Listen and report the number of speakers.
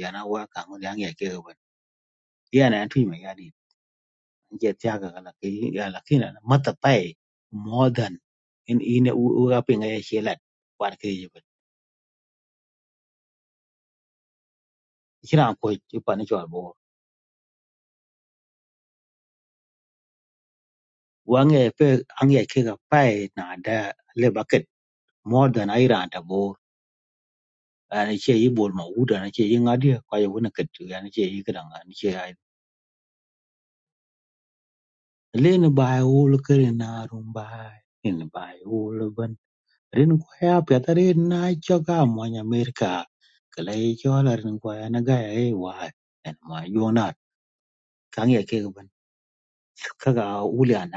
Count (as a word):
one